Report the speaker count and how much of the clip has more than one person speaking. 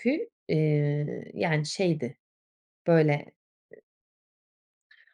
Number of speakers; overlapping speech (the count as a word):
one, no overlap